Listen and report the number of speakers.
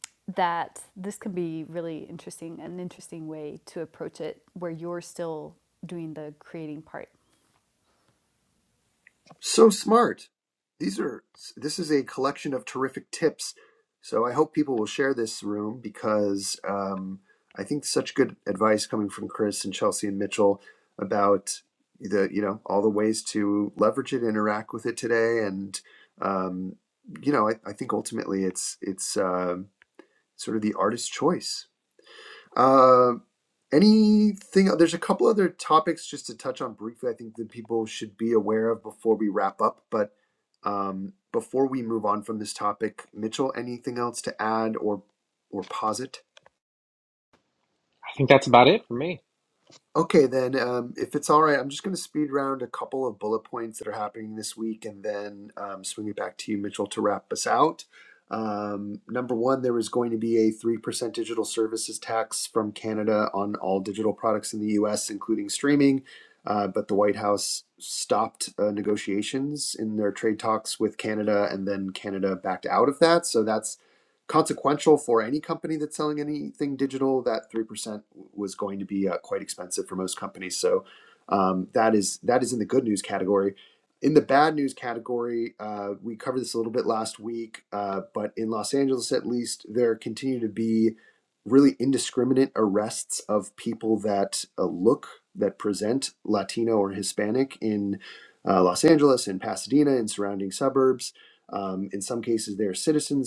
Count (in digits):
3